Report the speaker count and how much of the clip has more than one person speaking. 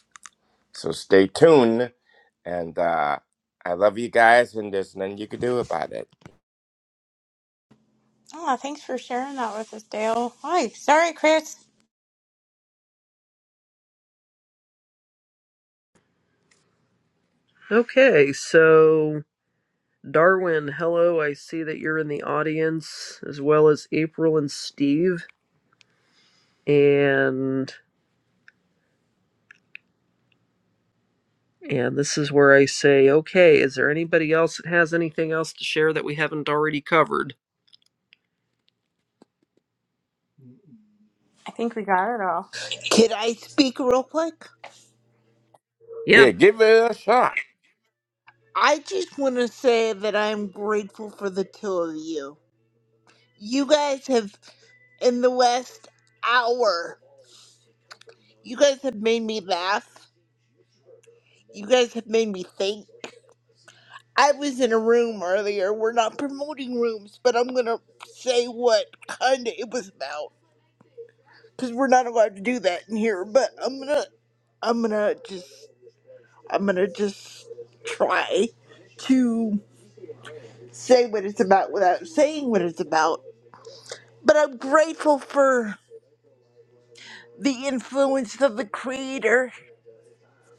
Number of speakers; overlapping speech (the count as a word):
four, under 1%